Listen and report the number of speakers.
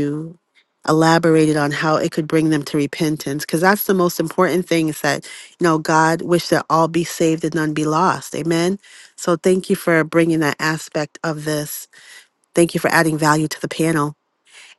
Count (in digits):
1